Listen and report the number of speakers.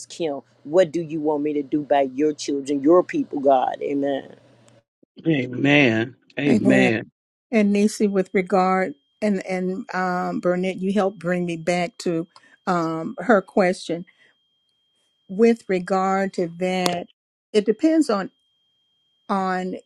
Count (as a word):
three